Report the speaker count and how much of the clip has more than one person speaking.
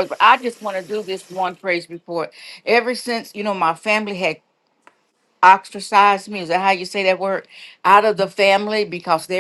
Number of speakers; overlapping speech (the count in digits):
1, no overlap